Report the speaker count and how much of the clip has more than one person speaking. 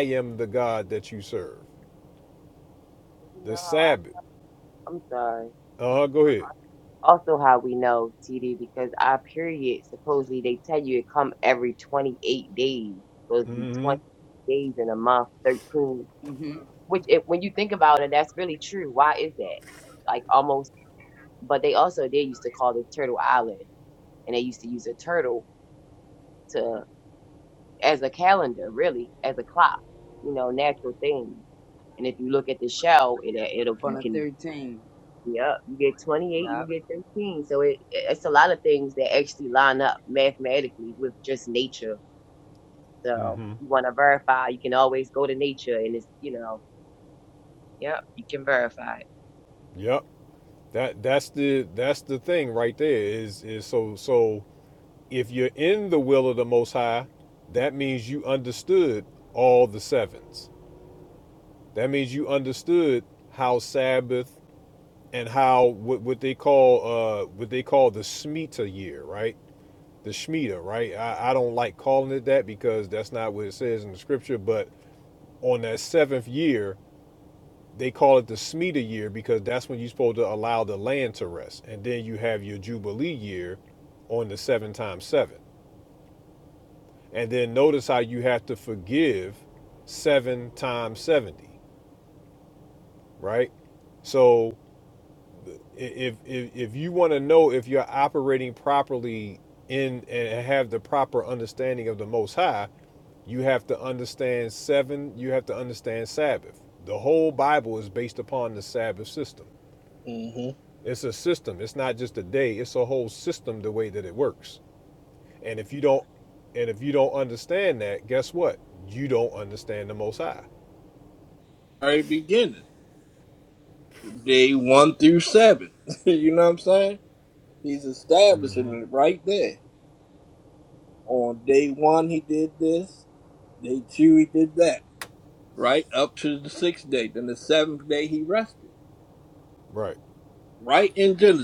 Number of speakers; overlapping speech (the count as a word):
four, about 2%